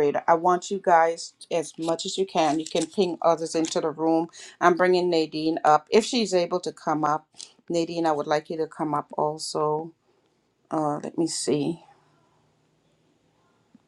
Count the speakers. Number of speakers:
1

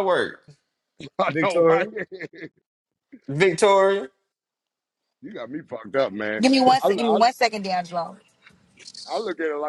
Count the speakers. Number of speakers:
3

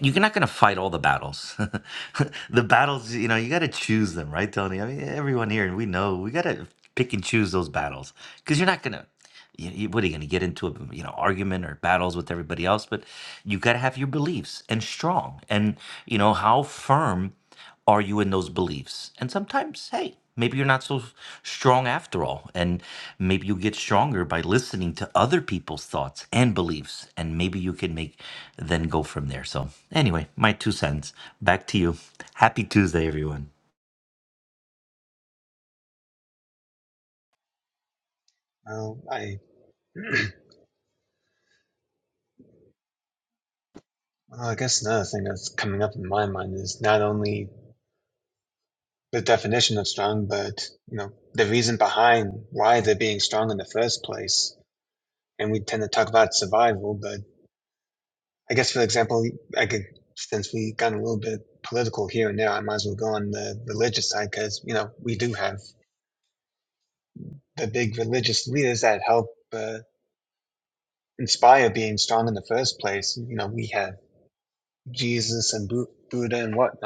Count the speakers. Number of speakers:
2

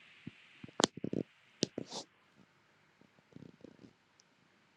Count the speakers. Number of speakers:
0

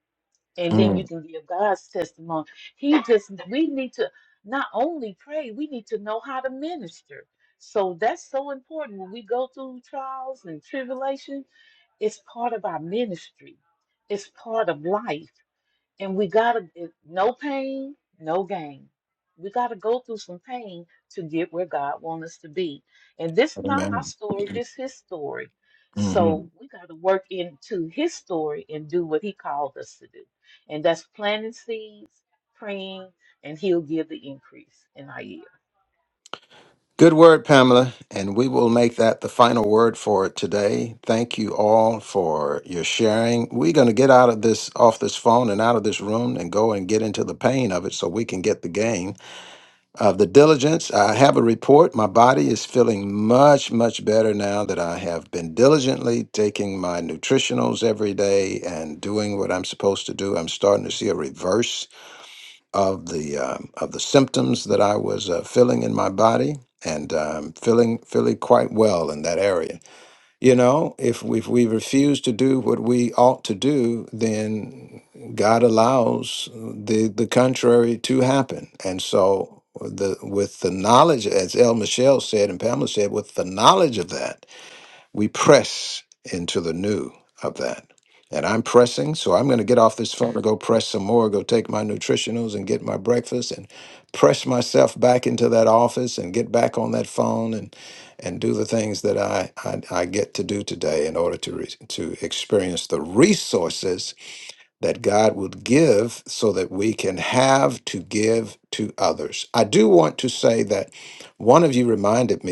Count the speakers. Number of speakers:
2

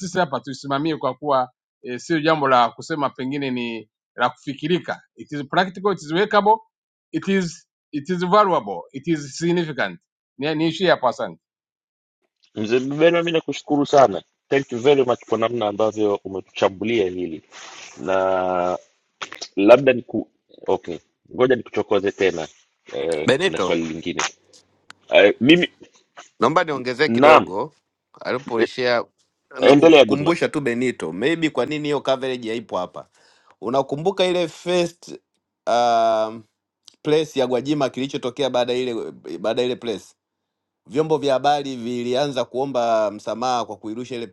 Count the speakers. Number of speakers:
3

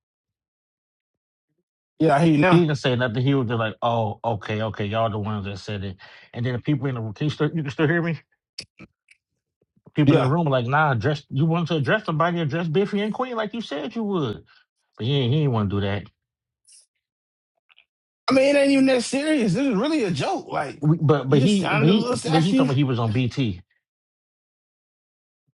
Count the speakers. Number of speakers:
2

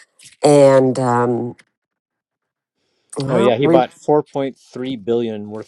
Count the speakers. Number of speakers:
2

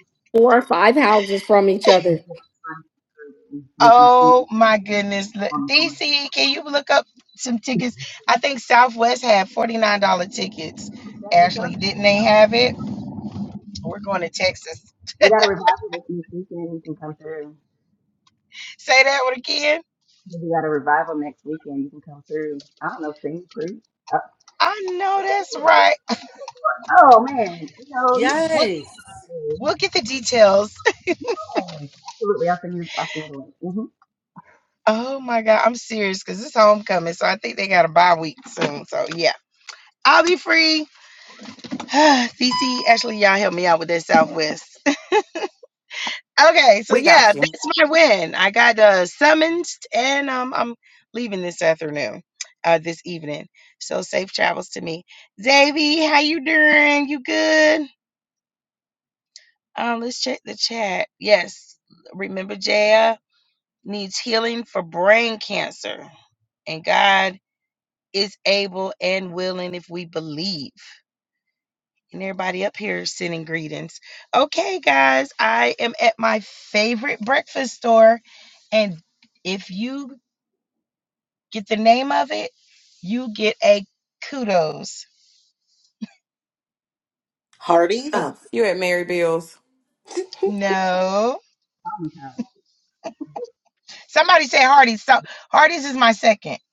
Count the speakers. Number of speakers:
5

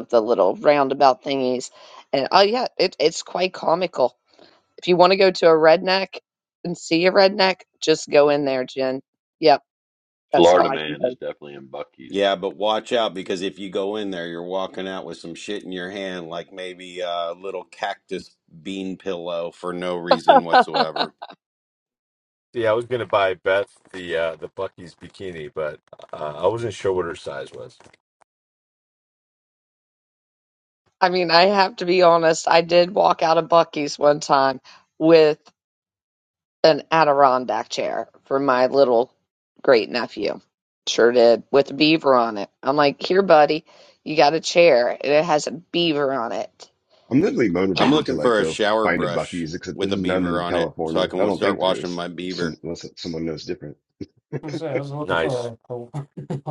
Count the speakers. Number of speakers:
6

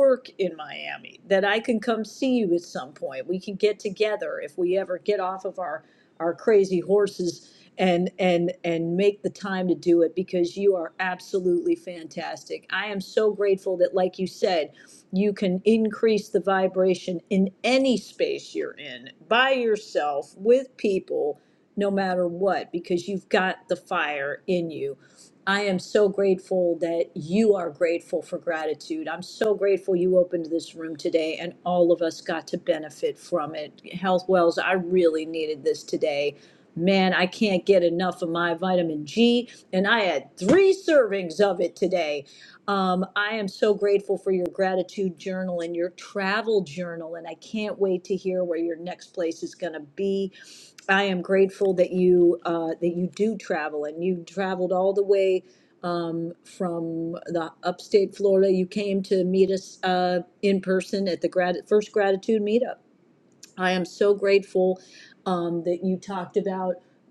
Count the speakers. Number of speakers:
1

